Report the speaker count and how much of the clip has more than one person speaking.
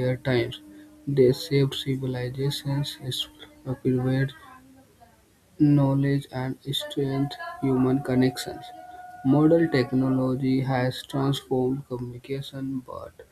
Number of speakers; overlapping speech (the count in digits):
1, no overlap